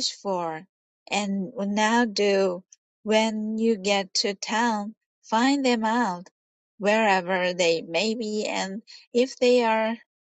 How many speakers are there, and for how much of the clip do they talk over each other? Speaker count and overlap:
1, no overlap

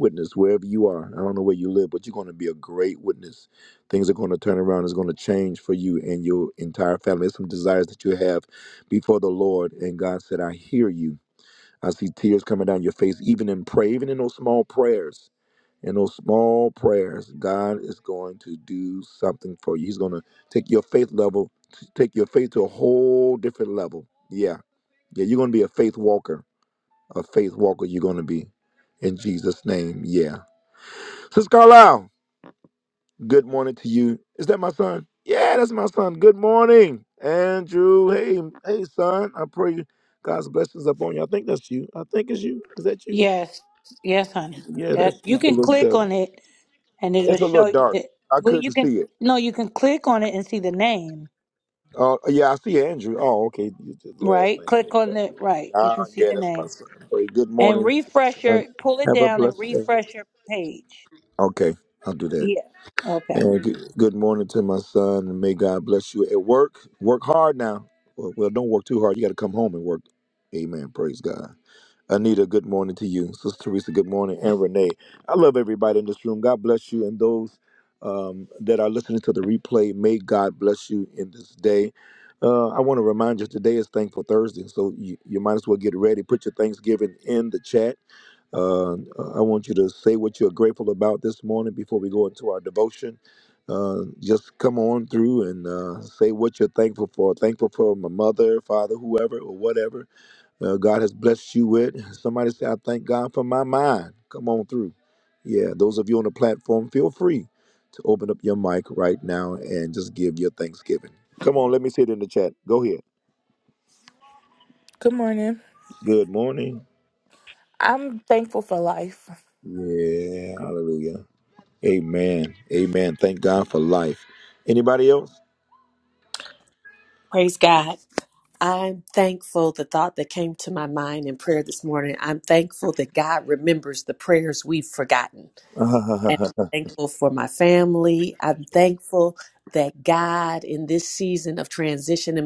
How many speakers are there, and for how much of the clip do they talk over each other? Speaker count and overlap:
4, about 4%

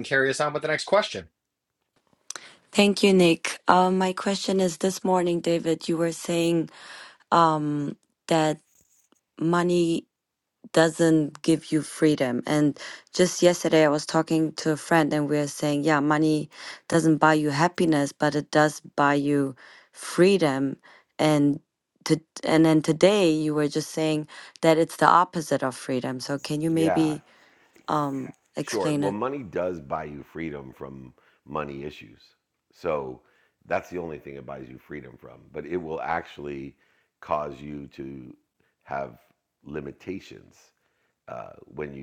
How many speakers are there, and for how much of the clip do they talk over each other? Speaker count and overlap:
3, about 3%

